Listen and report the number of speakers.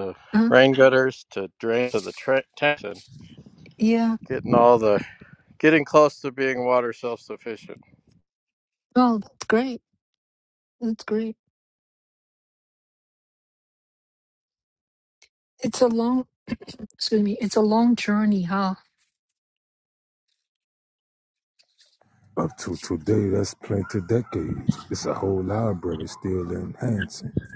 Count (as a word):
three